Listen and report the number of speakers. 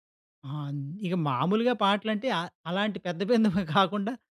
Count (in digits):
1